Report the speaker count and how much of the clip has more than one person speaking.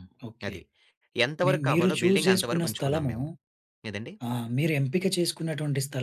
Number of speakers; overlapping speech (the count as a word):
two, about 32%